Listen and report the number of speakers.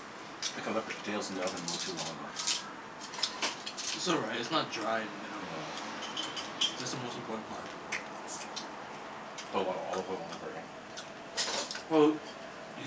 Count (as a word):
two